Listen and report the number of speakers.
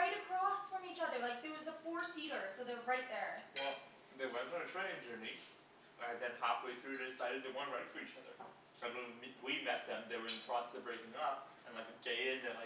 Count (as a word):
two